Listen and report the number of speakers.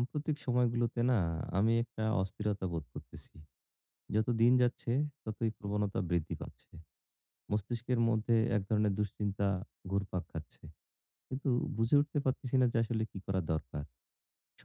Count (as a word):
one